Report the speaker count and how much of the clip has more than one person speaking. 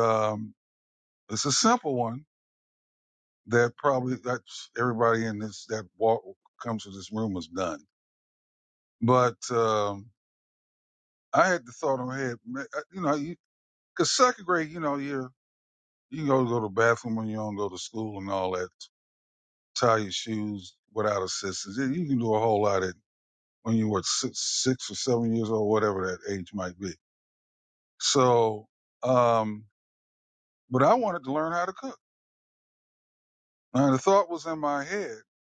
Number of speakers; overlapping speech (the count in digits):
1, no overlap